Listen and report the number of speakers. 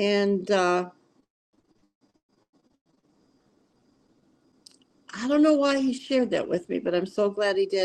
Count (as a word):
one